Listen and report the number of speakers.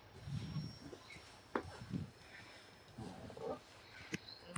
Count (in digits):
0